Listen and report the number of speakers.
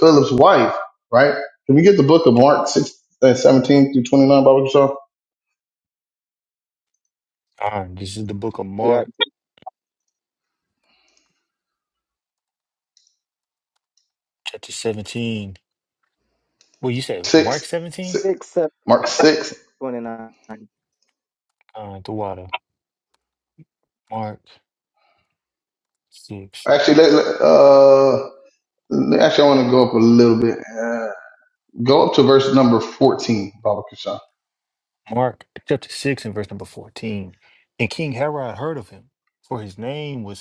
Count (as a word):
three